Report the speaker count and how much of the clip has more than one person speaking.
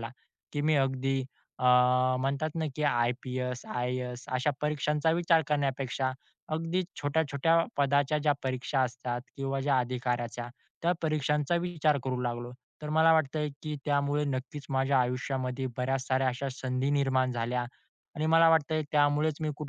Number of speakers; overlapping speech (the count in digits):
1, no overlap